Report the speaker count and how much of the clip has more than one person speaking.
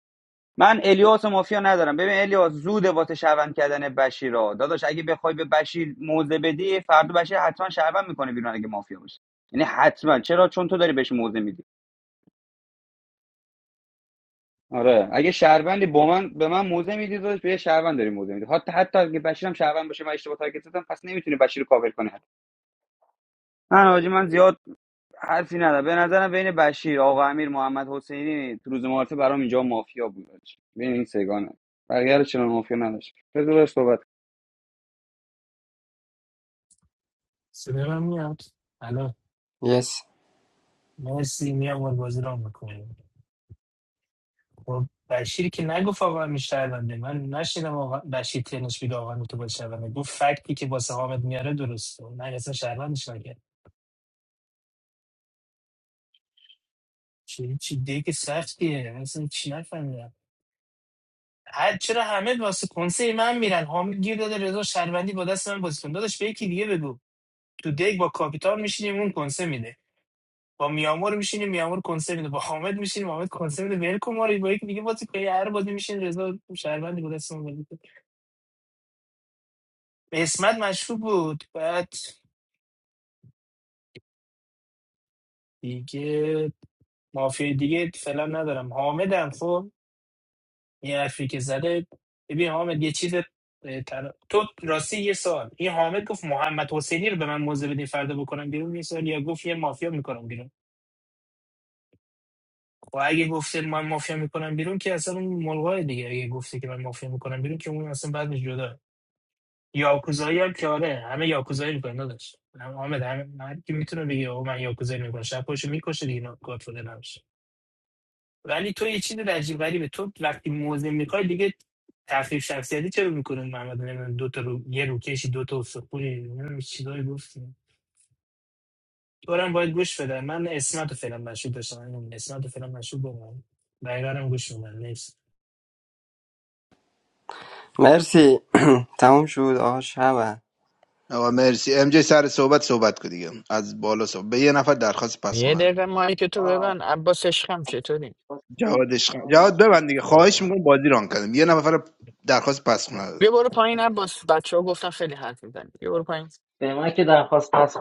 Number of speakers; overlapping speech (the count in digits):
6, about 2%